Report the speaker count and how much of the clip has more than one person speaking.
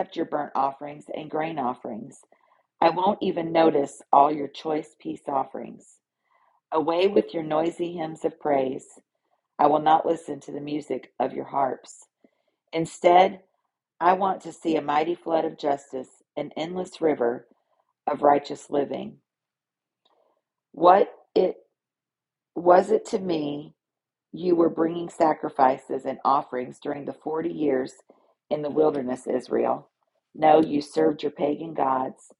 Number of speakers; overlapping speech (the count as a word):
one, no overlap